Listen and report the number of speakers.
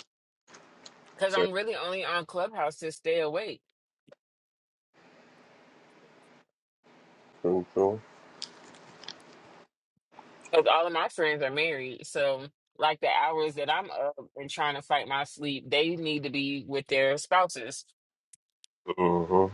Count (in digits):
2